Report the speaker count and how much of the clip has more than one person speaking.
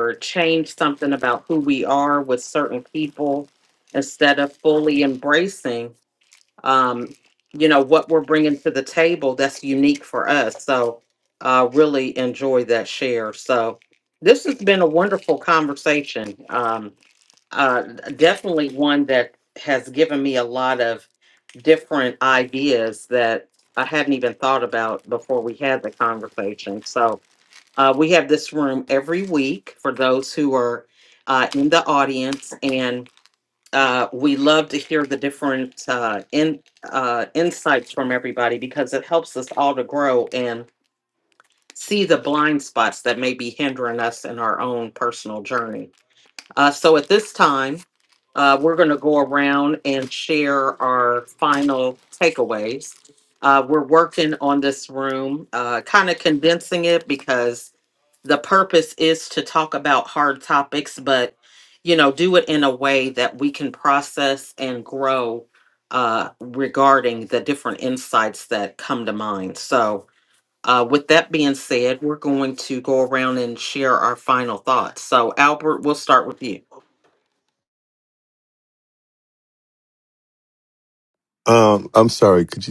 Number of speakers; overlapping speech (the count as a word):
two, no overlap